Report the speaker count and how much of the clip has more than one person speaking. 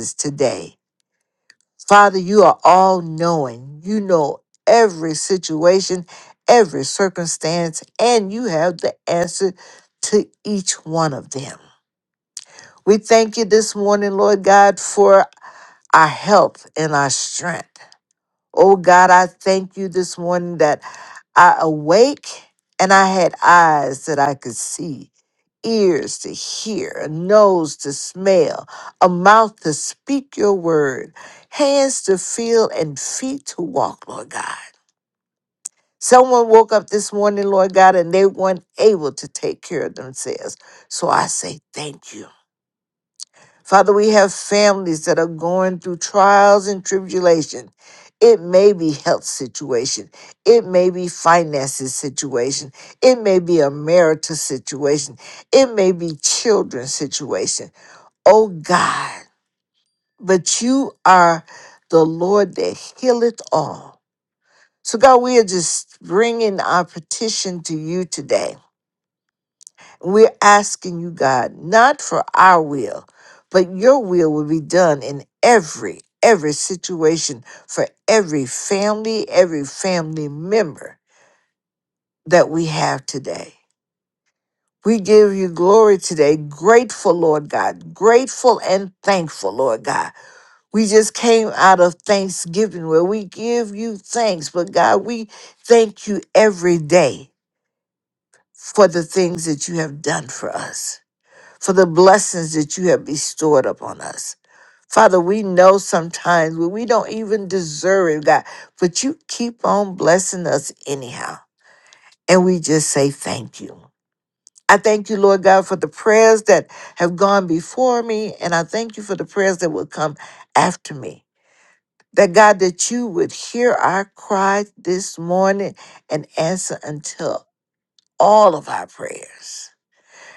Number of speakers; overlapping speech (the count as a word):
one, no overlap